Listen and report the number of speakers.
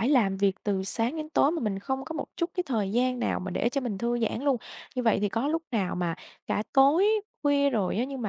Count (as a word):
one